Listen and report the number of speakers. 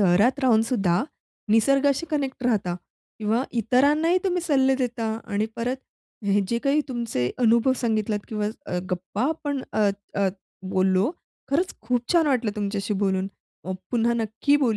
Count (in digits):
1